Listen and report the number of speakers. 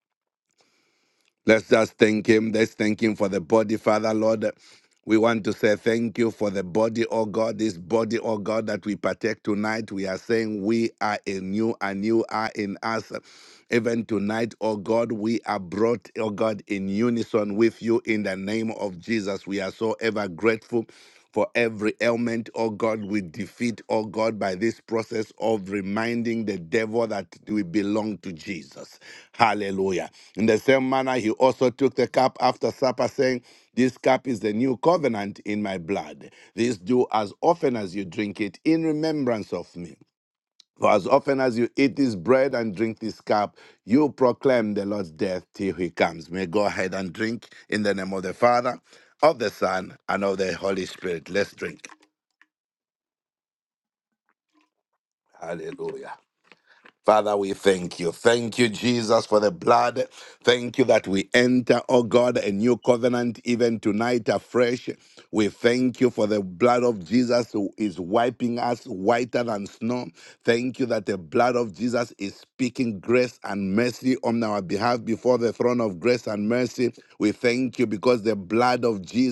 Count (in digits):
1